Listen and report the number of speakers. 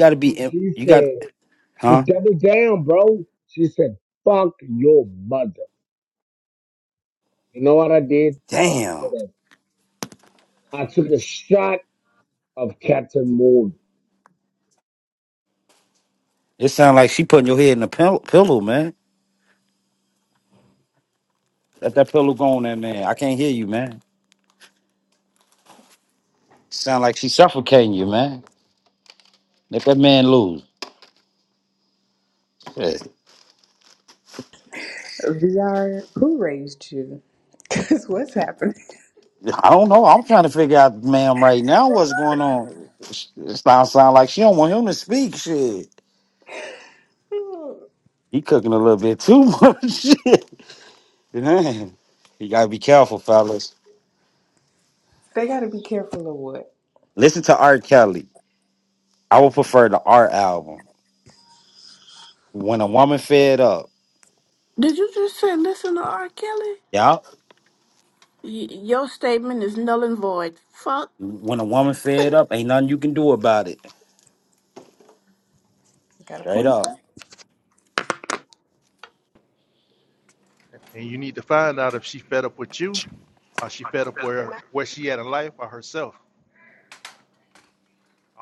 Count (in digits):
5